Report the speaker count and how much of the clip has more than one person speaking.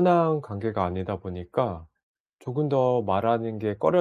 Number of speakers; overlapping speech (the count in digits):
1, no overlap